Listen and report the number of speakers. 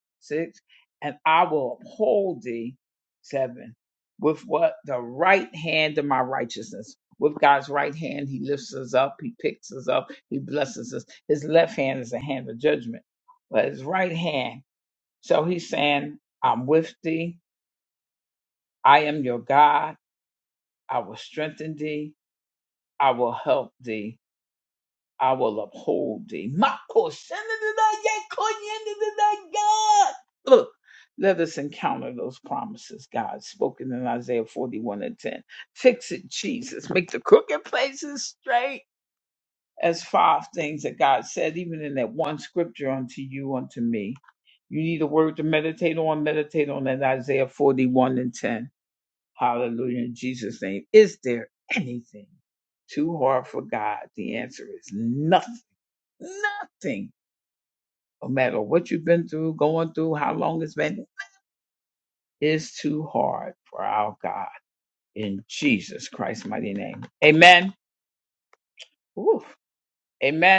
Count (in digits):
1